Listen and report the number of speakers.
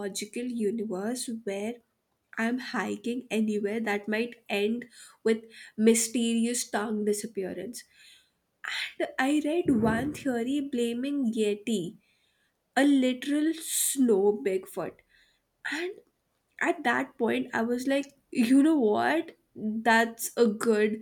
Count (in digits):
1